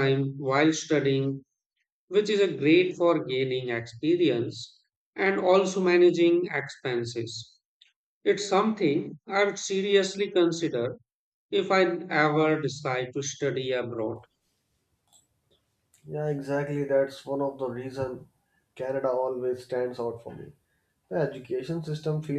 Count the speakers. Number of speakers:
2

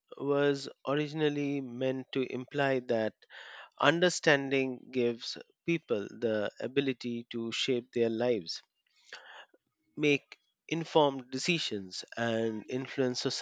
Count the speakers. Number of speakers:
1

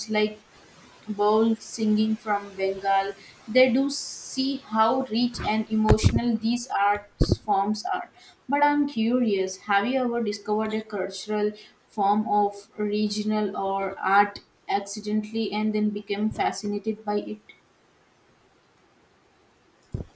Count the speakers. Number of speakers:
1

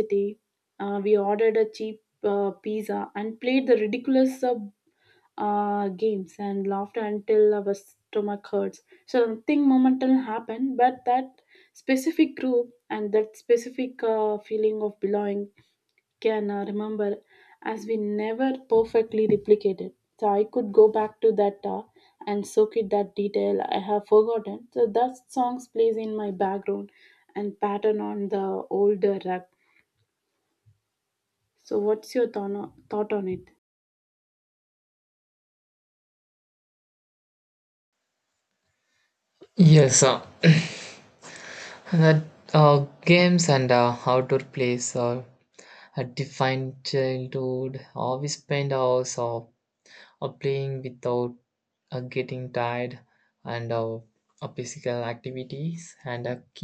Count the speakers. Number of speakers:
2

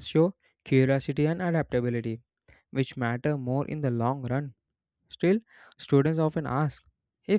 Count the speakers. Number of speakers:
1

